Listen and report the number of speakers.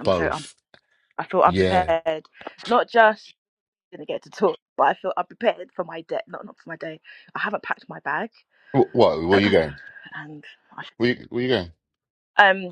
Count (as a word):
two